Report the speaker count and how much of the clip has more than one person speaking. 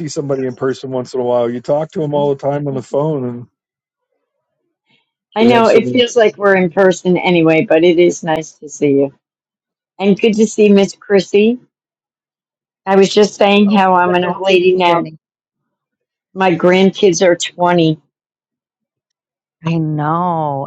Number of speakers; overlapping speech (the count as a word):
three, about 10%